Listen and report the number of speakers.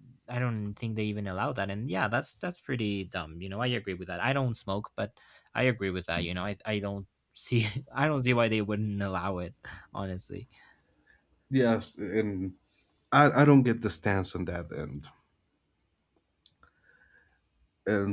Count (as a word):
two